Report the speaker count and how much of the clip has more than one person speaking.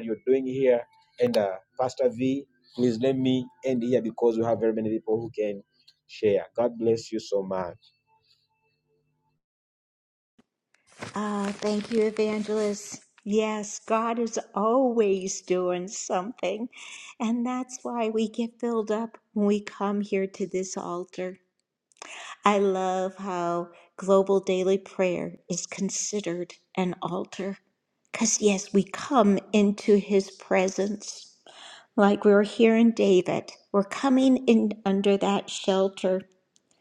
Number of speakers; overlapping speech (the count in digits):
2, no overlap